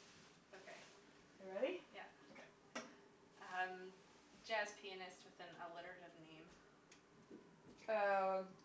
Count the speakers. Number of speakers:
two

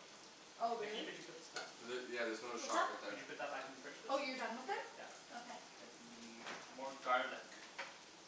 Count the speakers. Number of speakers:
three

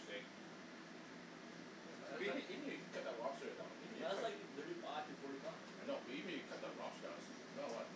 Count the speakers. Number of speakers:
two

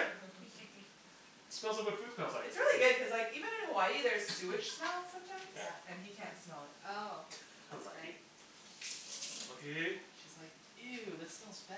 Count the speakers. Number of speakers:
four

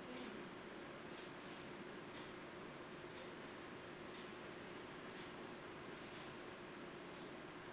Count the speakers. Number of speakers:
zero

